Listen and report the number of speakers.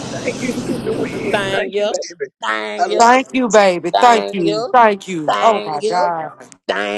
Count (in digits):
3